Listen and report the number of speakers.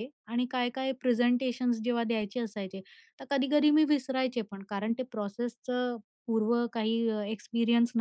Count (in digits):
1